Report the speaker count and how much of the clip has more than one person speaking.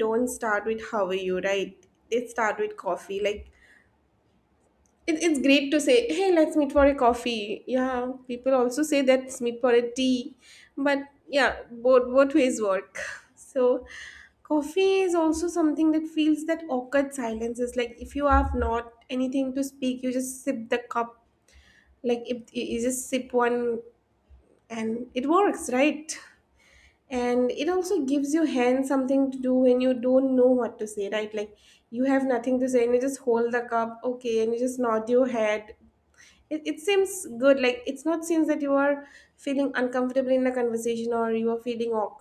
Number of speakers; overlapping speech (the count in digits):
1, no overlap